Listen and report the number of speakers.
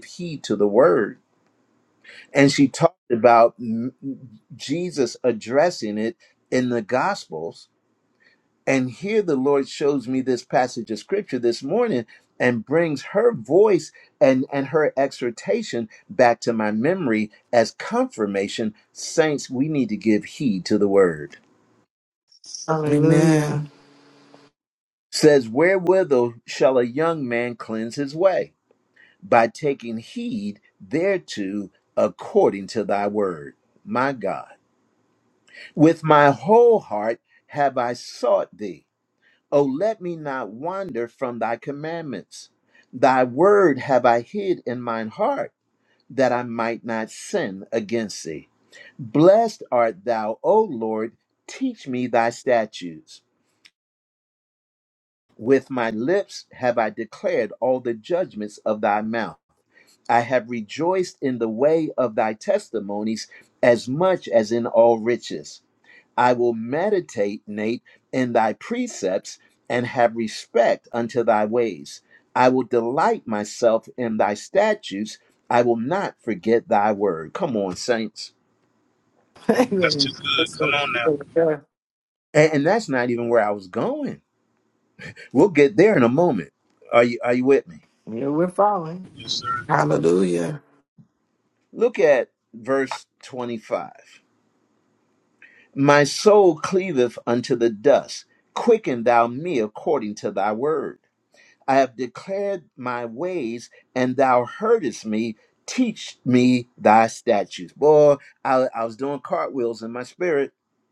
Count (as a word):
four